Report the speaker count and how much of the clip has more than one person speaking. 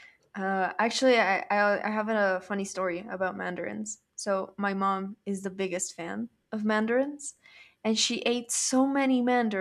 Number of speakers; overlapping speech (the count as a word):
one, no overlap